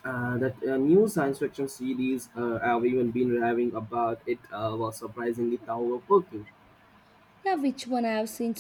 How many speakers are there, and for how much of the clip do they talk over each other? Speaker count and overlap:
two, no overlap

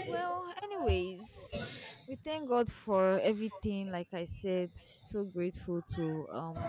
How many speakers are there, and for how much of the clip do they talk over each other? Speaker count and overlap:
one, no overlap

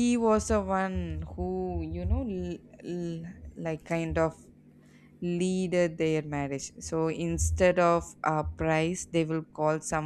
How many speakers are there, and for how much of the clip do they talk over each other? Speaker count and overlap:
one, no overlap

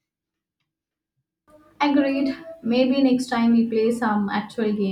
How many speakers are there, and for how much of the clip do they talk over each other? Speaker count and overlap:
one, no overlap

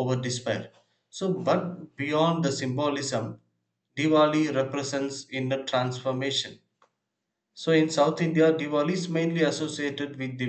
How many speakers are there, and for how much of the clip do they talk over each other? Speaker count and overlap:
one, no overlap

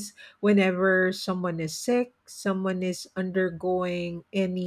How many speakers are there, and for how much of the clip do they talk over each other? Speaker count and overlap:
one, no overlap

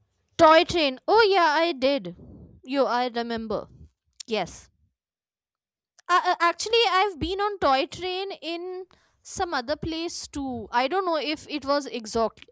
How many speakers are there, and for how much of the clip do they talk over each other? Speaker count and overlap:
one, no overlap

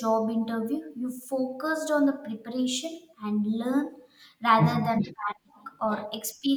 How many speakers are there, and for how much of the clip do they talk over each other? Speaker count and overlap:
one, no overlap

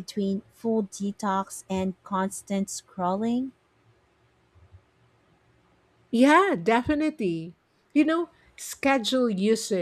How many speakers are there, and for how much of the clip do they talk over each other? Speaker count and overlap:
two, no overlap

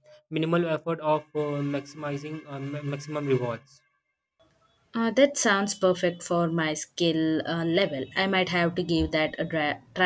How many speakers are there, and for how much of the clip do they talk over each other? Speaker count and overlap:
two, no overlap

